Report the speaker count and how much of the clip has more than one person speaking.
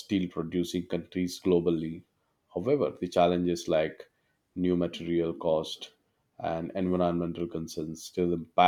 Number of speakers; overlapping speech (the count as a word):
one, no overlap